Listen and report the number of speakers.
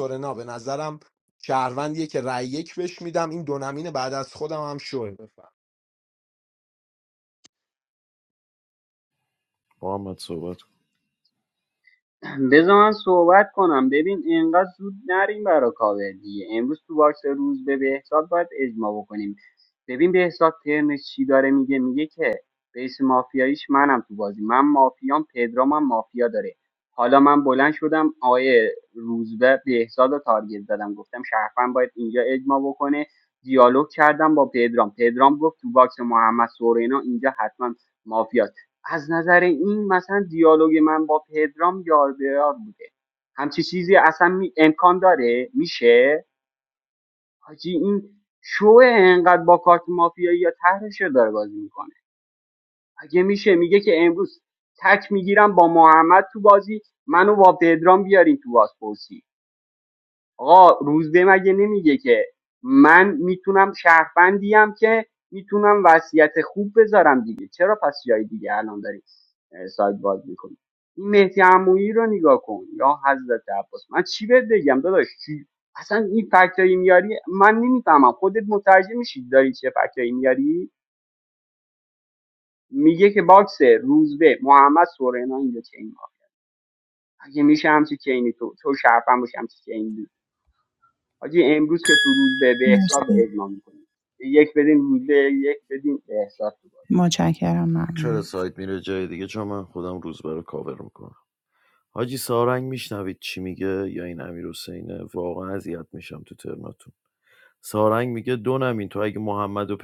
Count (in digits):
4